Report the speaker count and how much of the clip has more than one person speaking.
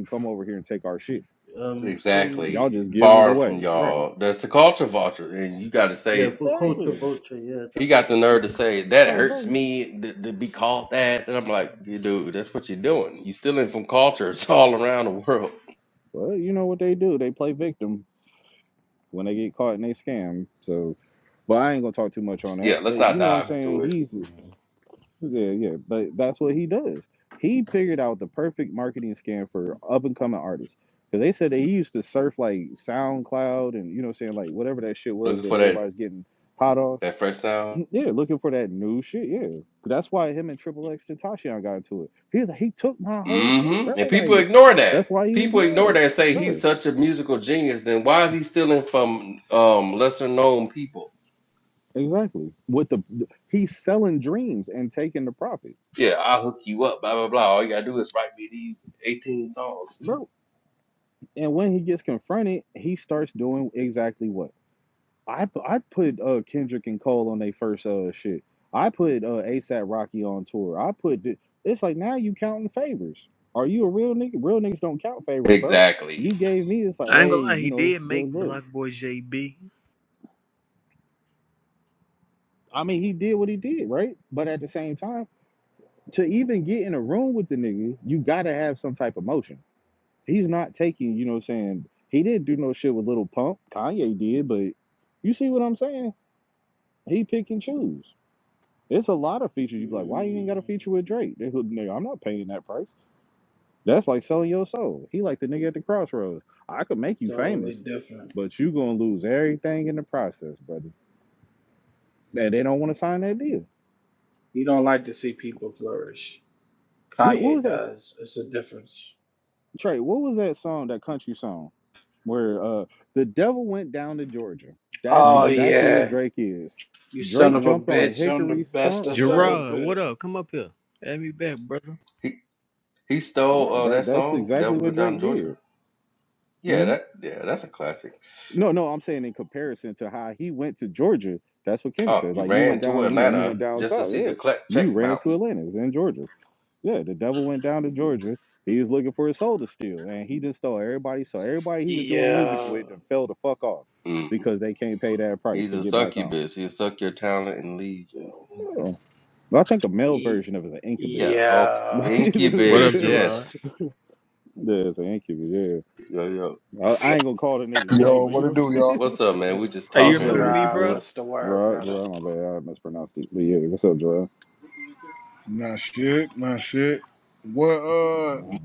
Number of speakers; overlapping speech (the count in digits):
6, about 16%